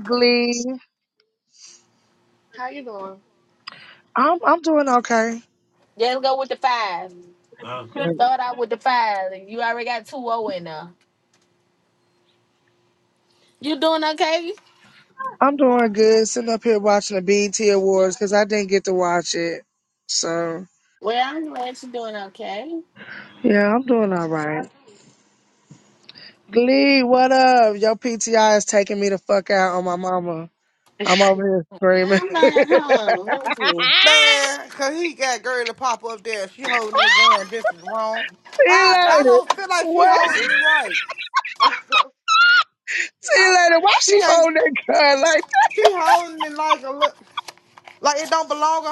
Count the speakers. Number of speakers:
4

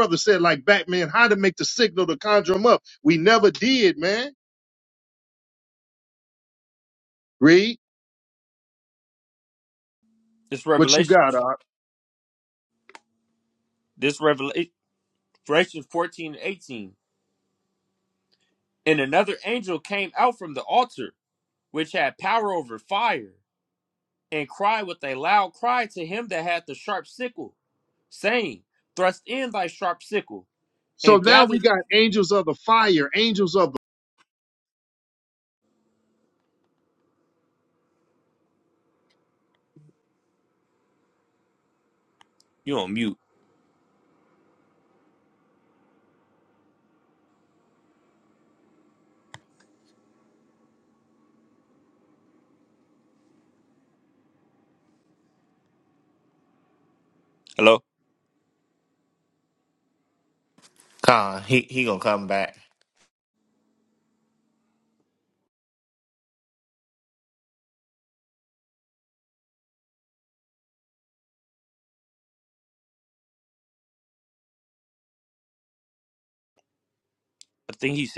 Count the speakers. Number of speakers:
3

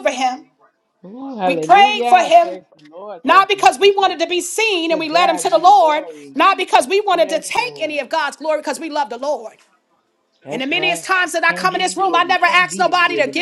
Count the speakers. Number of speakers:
2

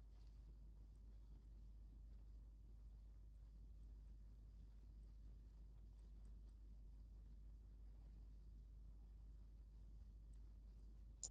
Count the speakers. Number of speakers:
0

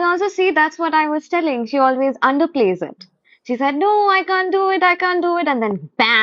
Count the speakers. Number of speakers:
1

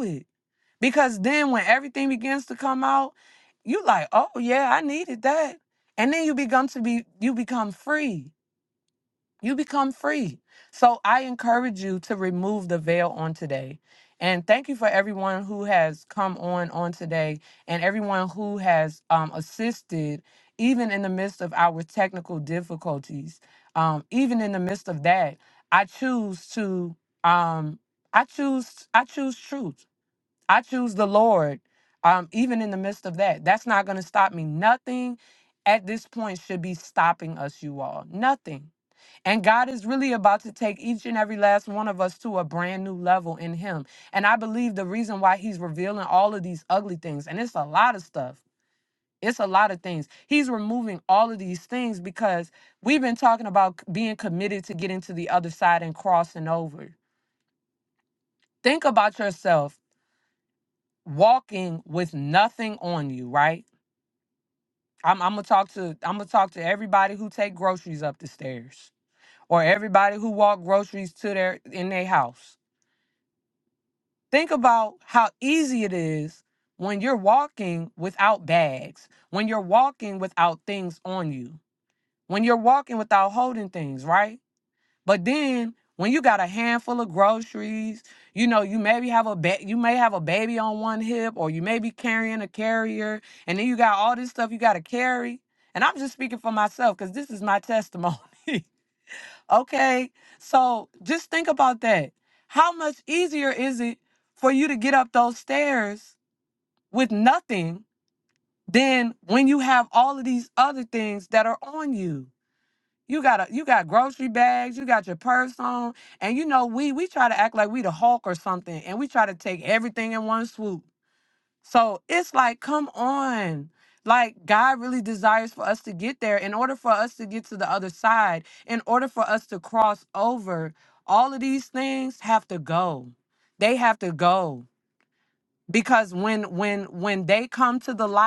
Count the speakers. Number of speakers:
1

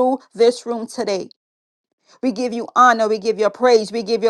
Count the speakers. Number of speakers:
1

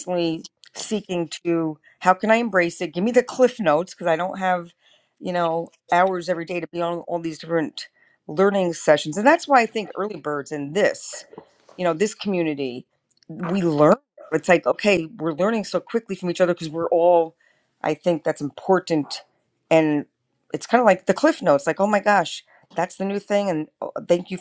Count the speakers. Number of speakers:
1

